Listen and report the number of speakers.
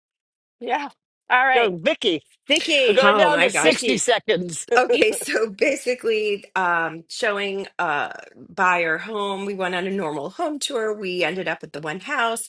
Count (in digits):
3